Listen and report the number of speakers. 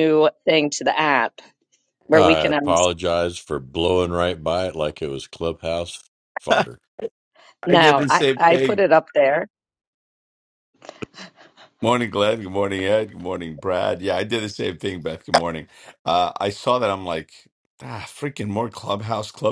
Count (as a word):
three